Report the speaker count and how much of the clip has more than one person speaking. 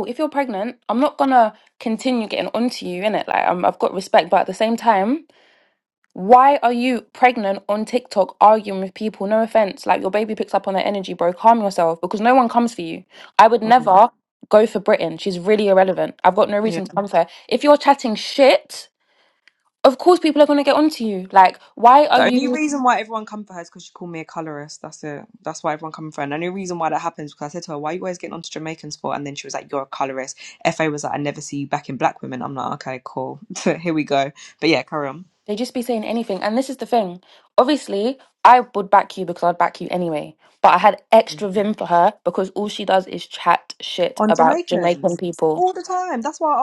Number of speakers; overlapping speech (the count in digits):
2, about 4%